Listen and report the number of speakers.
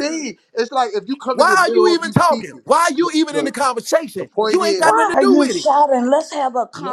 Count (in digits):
3